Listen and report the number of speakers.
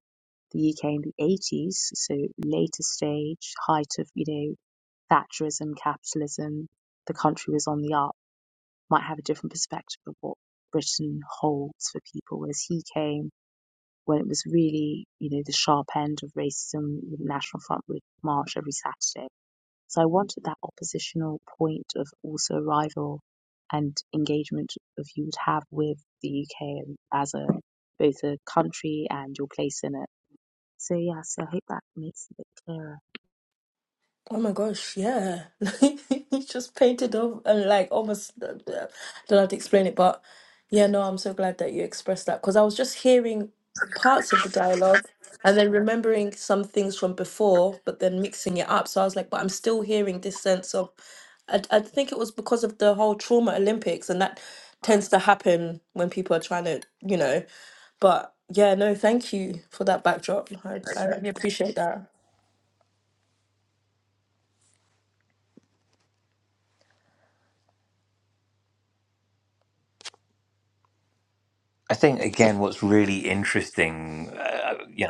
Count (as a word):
three